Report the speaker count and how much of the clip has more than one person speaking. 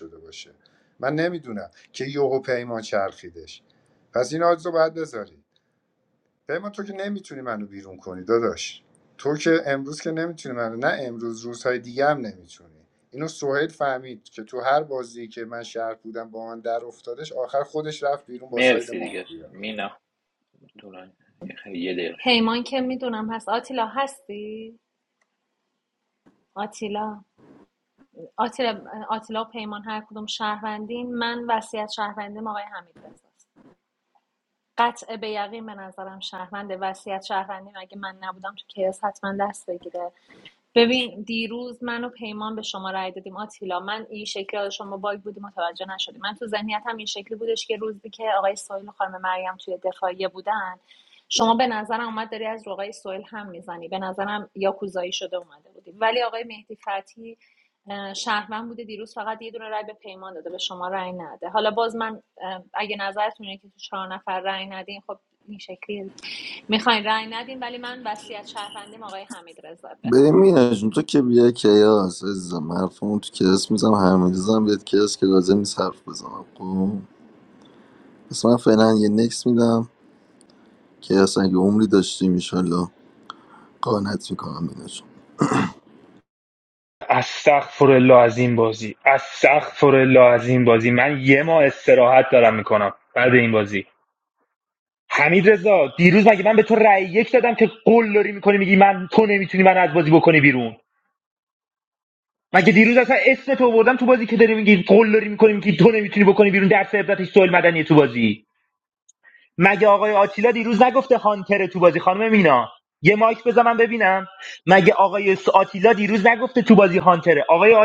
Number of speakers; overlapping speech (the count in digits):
5, about 1%